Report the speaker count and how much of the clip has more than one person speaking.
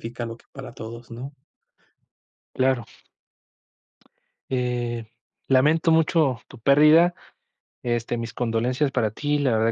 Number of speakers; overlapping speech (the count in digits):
2, no overlap